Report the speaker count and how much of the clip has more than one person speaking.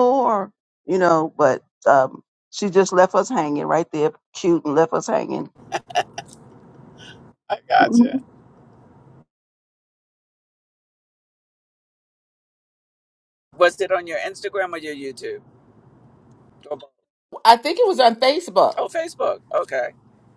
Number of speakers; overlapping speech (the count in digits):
3, about 2%